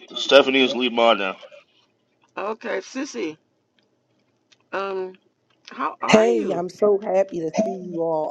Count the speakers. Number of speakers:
three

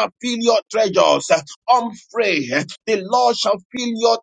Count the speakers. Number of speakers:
one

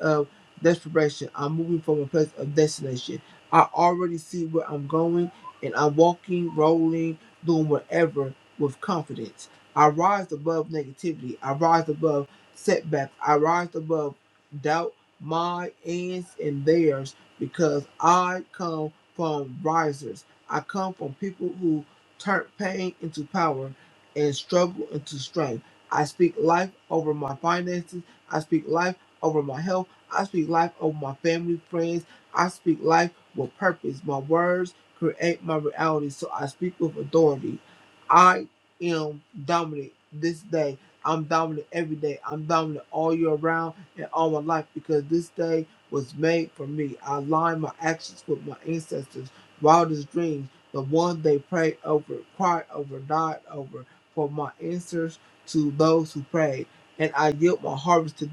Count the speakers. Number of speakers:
one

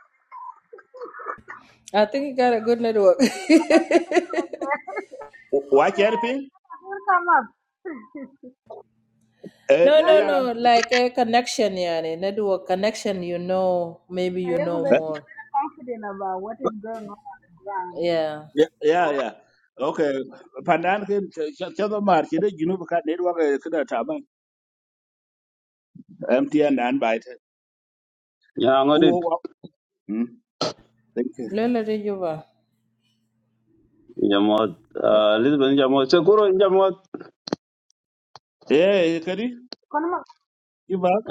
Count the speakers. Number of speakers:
four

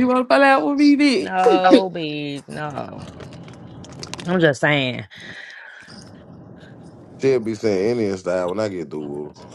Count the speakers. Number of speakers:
three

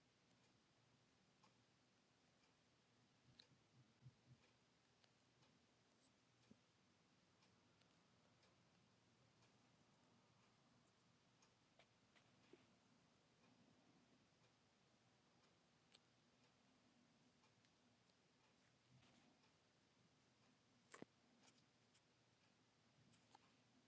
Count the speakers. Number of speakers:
zero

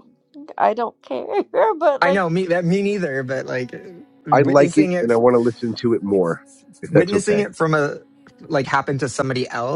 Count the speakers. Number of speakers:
three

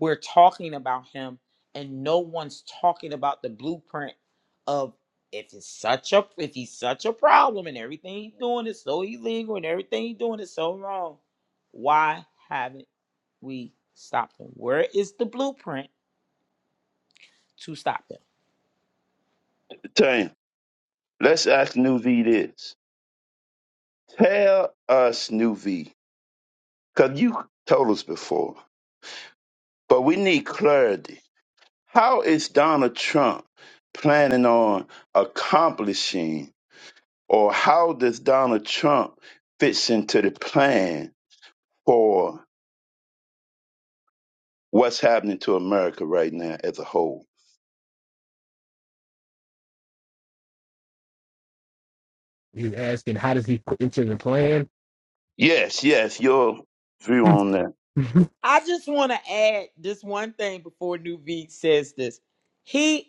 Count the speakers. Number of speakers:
three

